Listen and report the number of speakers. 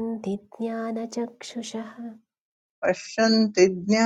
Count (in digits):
2